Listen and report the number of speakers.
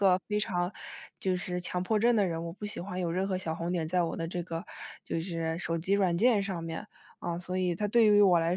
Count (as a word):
one